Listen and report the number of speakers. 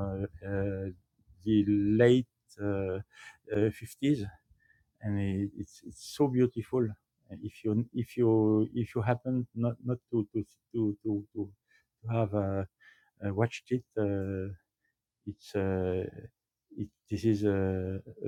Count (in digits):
1